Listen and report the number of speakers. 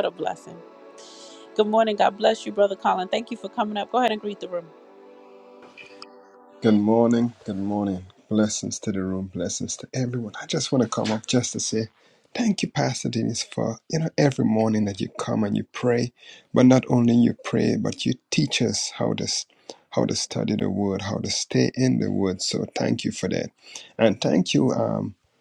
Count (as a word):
two